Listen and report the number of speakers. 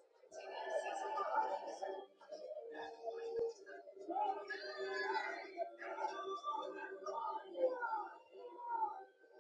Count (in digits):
0